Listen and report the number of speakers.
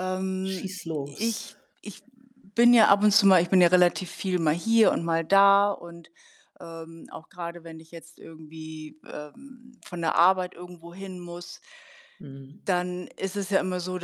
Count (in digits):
2